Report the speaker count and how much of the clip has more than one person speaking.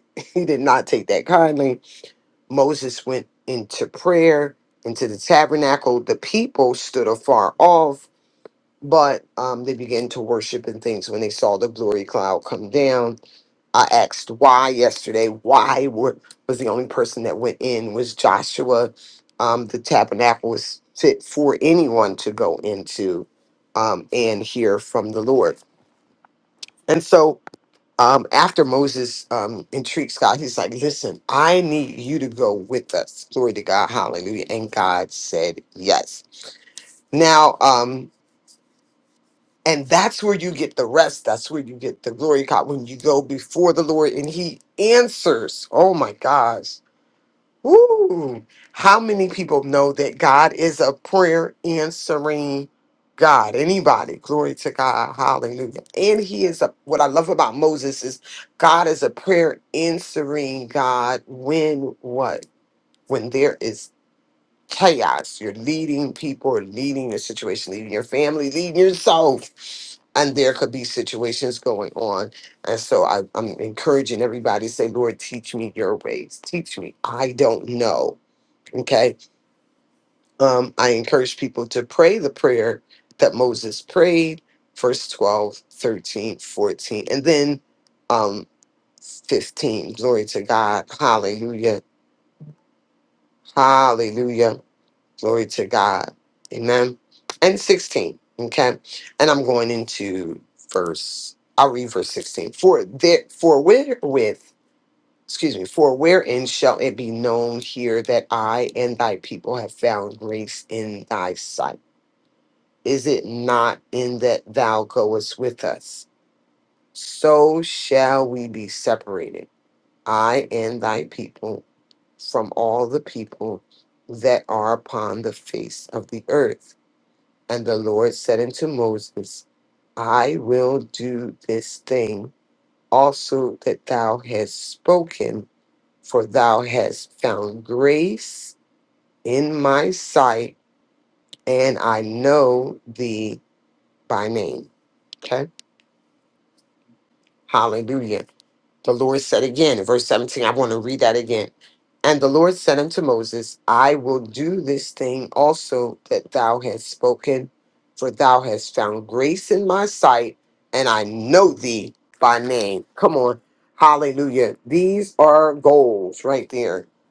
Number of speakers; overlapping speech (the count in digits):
1, no overlap